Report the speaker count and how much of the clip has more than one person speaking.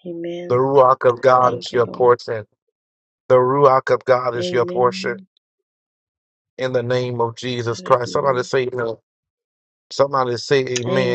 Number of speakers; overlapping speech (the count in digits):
2, about 25%